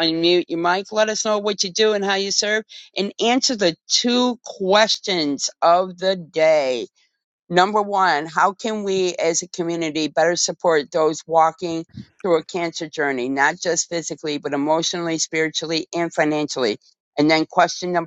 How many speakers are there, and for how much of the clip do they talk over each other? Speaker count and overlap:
1, no overlap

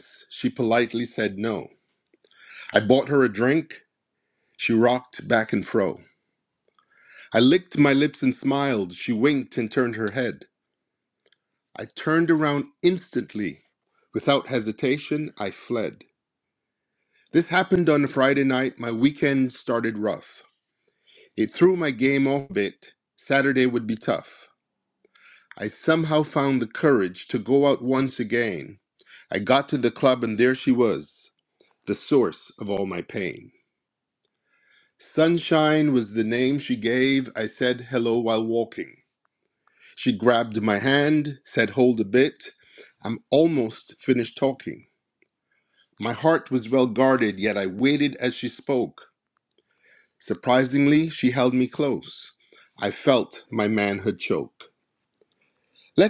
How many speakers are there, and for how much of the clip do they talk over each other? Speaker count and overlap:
1, no overlap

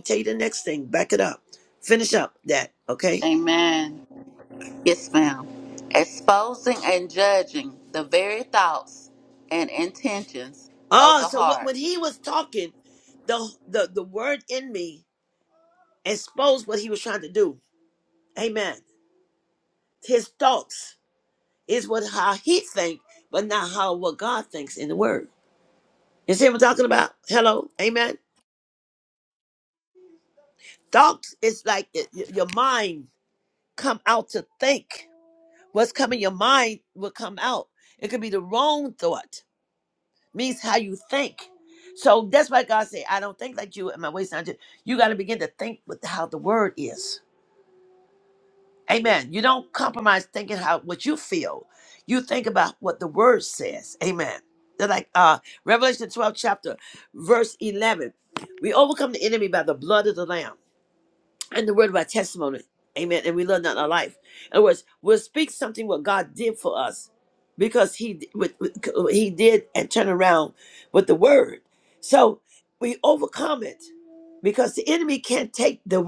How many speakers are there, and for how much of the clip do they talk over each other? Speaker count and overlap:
2, about 1%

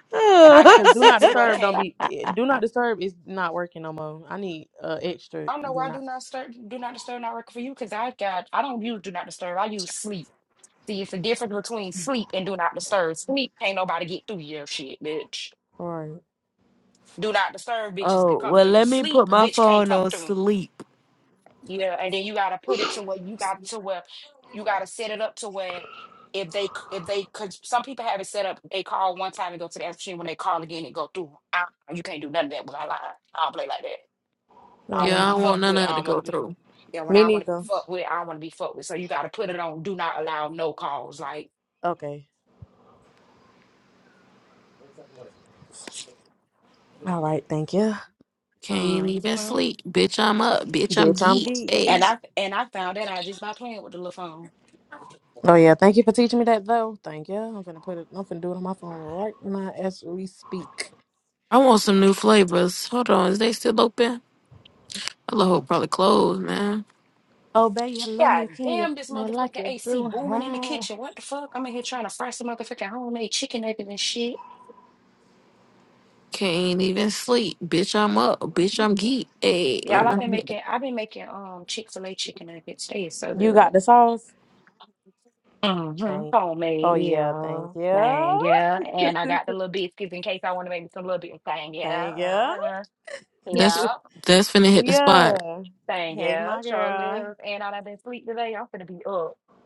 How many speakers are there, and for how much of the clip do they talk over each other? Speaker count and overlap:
3, about 16%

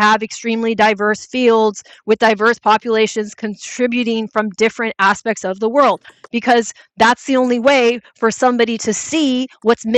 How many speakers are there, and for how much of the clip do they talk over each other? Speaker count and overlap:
1, no overlap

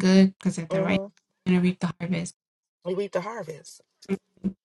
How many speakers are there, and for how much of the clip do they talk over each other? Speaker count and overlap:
2, about 6%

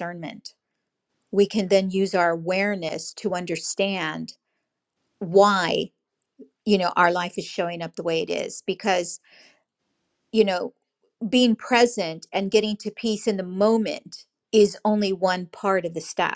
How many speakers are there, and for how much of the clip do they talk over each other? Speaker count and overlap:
1, no overlap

